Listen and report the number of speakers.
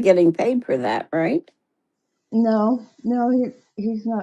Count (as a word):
two